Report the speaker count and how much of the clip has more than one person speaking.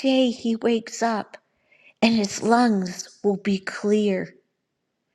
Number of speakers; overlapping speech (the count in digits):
1, no overlap